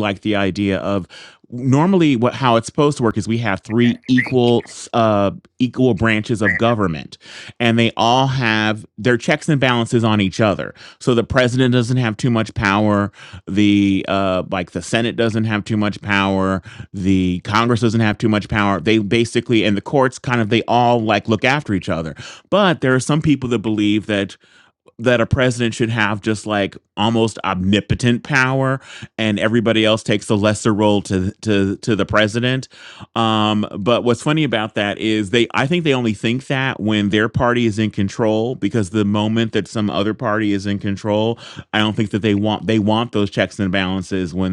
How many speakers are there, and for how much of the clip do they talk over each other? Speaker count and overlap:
1, no overlap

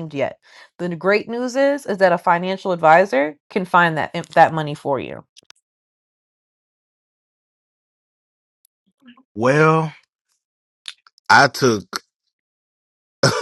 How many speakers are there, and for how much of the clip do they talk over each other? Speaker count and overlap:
2, no overlap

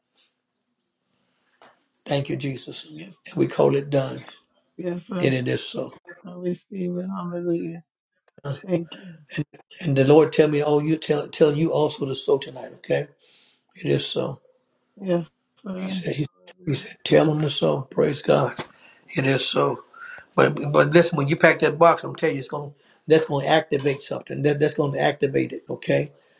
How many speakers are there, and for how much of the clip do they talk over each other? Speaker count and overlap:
2, about 1%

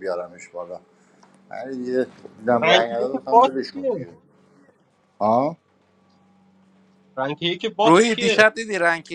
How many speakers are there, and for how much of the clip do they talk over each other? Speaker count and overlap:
3, about 22%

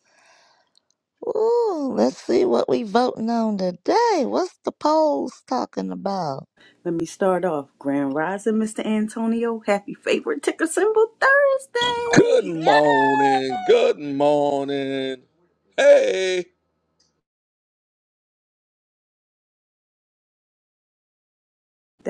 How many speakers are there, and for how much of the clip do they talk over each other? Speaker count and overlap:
3, about 6%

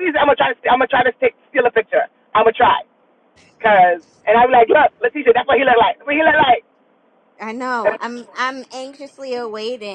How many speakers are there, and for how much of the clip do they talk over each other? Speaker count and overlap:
2, no overlap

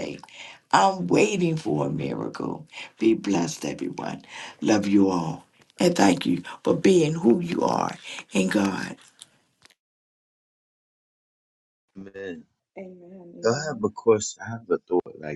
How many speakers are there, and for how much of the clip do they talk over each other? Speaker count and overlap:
3, about 3%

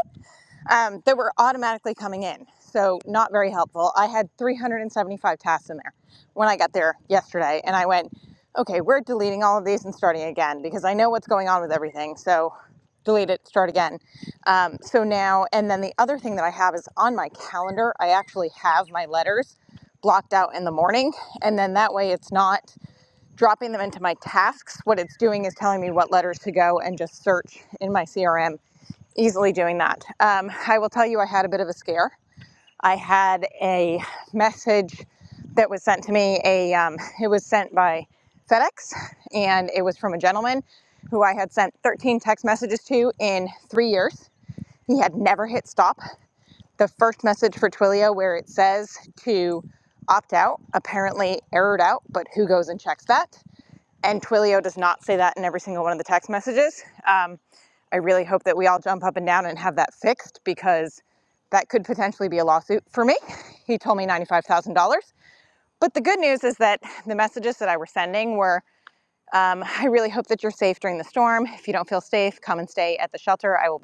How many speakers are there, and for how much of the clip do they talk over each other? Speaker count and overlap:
1, no overlap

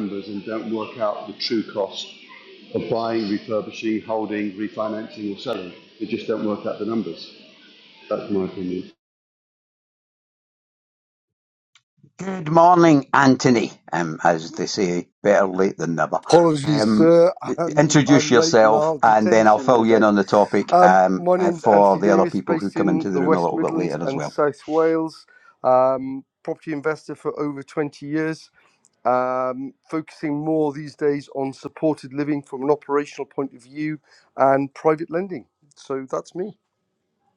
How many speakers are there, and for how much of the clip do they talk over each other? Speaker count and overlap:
3, about 17%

